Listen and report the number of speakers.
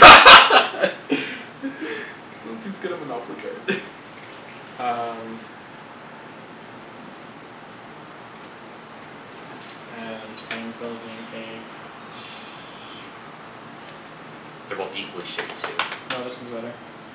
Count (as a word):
three